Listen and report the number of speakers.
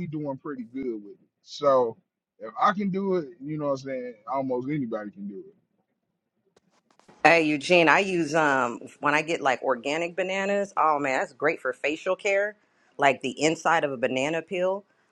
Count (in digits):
2